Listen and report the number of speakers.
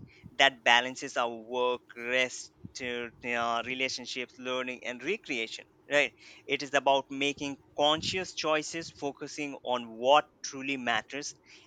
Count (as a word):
one